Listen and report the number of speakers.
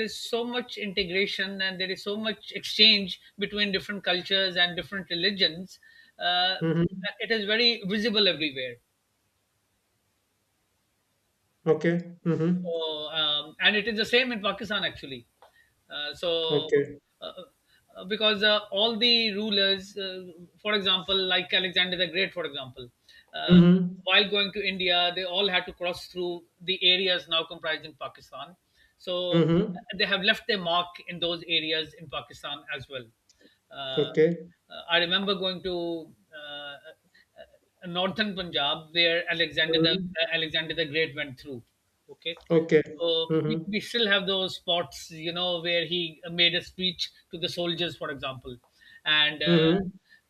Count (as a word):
two